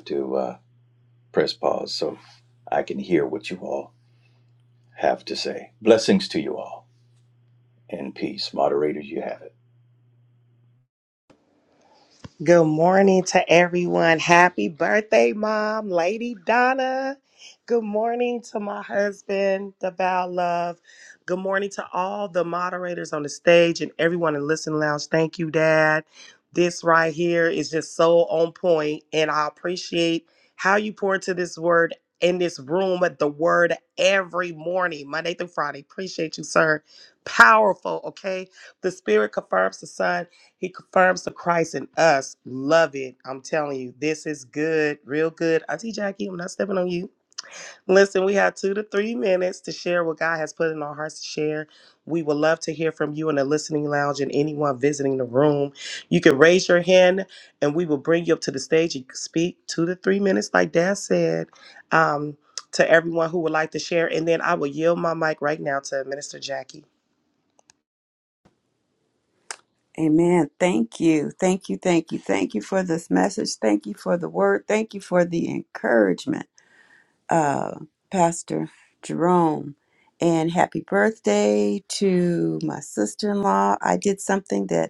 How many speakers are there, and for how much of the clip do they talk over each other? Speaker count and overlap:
three, no overlap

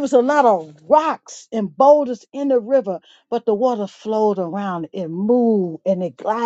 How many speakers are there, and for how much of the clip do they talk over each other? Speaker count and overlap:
one, no overlap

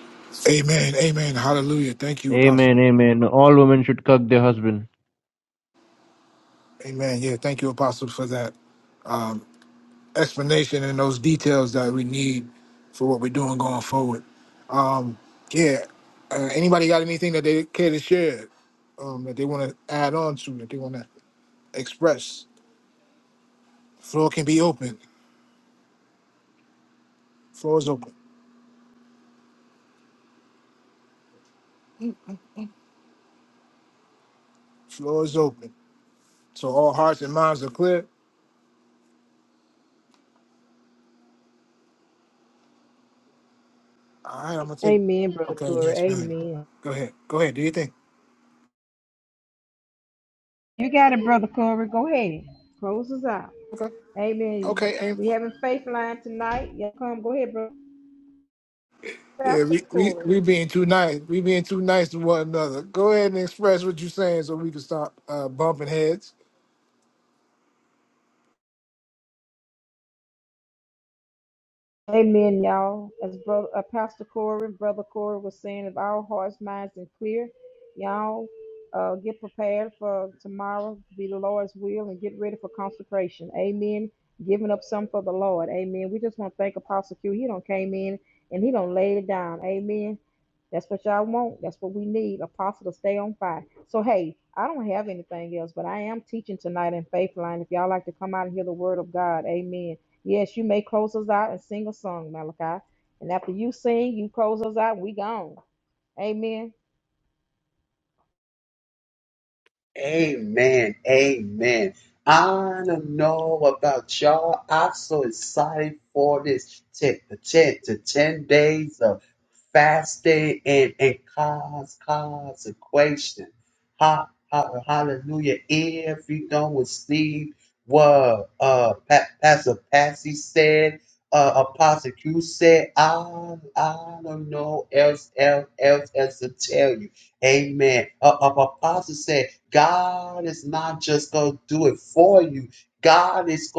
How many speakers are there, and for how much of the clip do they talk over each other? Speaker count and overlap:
four, about 2%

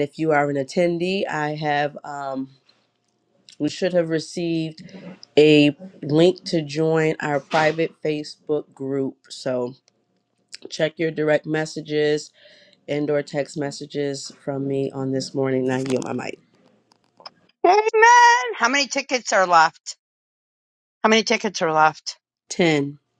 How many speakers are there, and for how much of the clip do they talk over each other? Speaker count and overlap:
two, no overlap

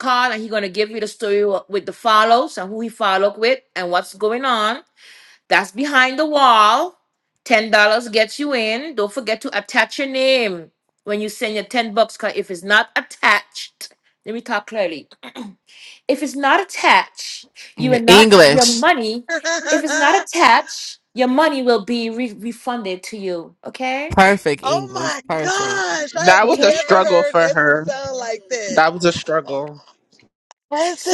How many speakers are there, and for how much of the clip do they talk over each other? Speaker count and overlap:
four, about 14%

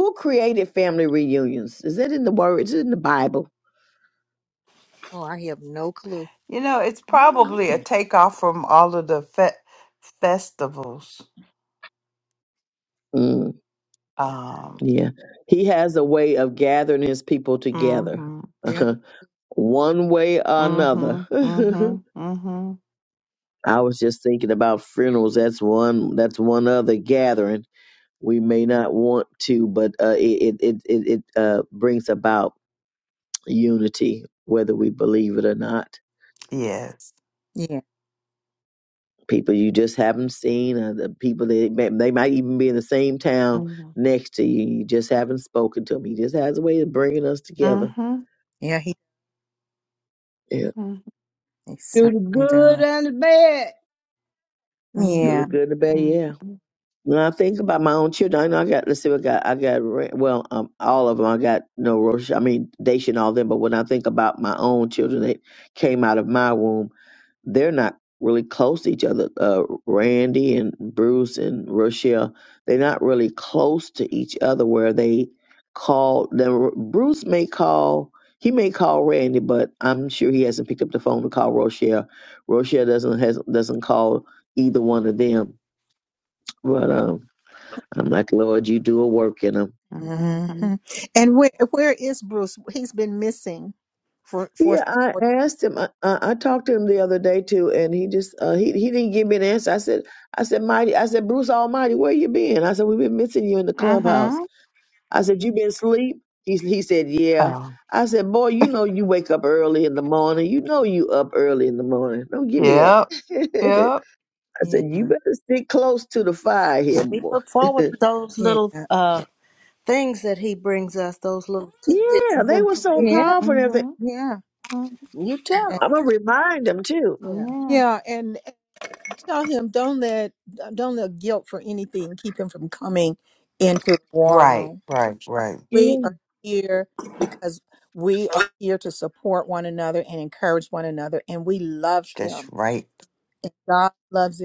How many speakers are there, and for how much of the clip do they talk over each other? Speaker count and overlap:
five, about 7%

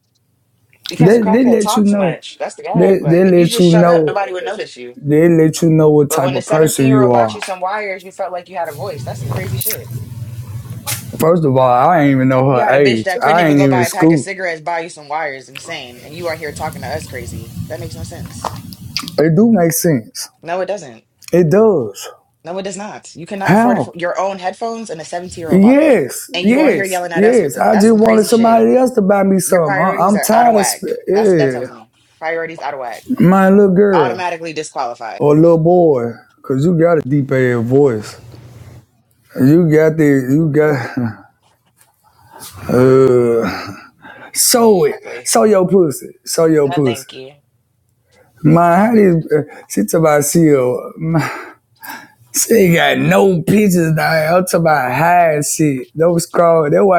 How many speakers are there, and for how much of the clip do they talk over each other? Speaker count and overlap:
two, about 22%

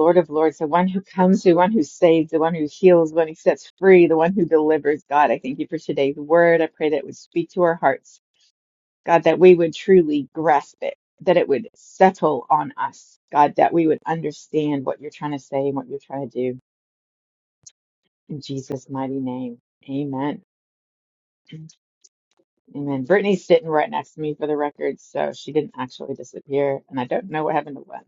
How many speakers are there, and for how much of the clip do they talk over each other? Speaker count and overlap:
one, no overlap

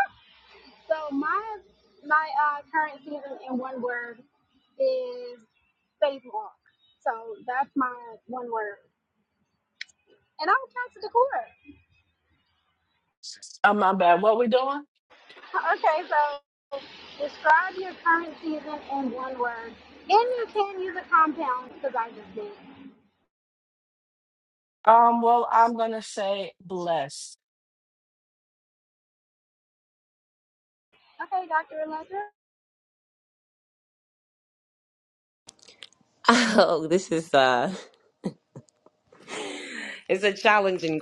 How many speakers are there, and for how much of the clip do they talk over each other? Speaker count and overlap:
three, no overlap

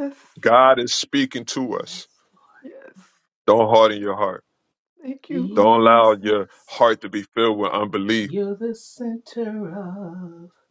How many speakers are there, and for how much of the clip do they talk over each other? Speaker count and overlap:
three, about 11%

